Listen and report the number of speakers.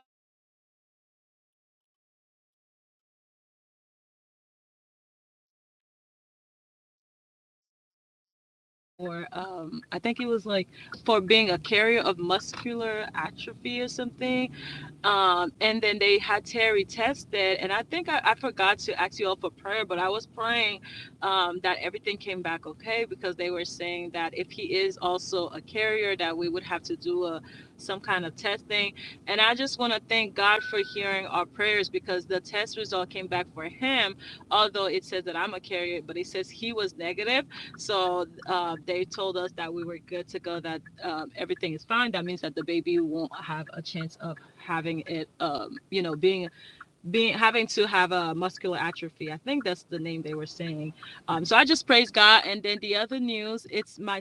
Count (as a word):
one